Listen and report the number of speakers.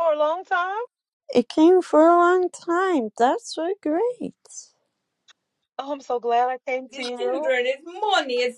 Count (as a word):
three